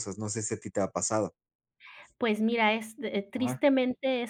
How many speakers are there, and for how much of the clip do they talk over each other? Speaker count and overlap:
2, about 5%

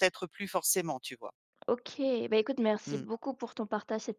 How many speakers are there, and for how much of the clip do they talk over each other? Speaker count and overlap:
2, about 5%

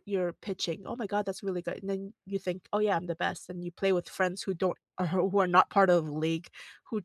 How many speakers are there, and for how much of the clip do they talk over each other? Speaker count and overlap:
1, no overlap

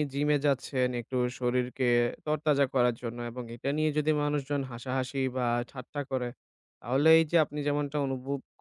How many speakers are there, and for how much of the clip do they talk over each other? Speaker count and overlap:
1, no overlap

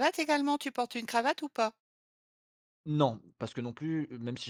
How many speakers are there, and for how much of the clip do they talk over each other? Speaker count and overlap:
2, no overlap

